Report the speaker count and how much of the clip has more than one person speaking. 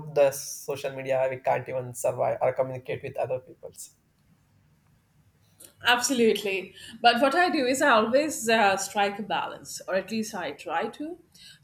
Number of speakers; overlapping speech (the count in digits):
2, no overlap